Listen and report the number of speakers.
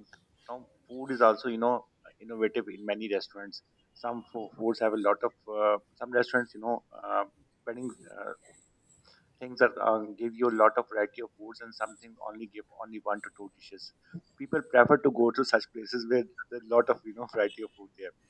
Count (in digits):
1